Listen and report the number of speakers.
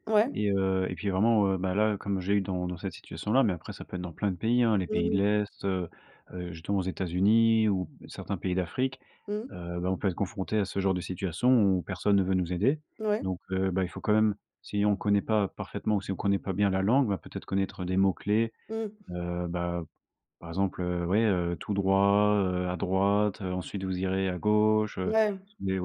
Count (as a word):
two